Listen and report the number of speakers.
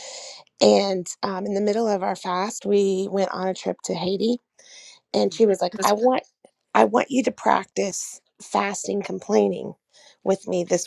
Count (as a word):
one